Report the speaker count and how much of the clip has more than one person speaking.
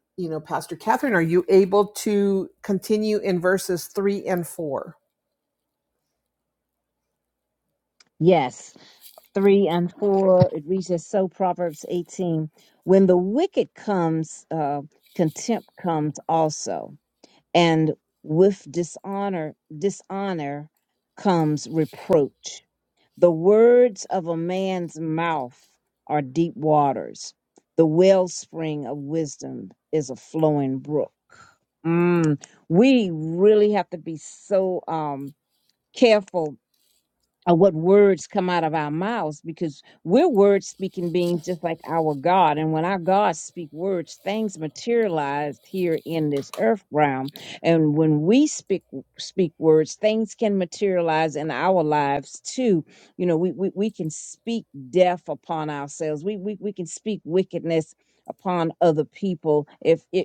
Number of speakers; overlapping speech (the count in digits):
2, no overlap